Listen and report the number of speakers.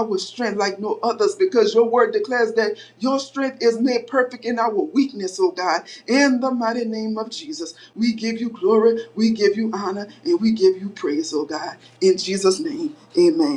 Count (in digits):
1